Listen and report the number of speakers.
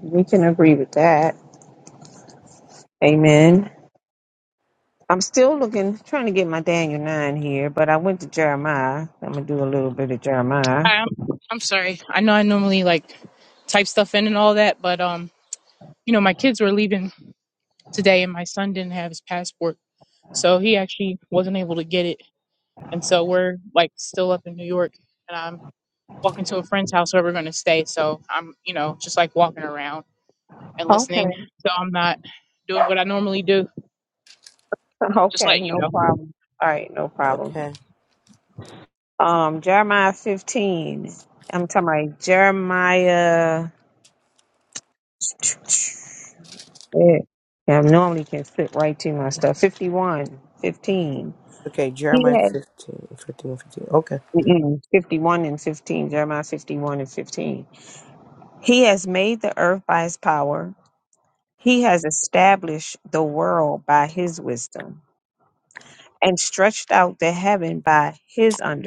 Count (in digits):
3